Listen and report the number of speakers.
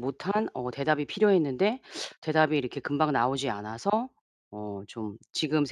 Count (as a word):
one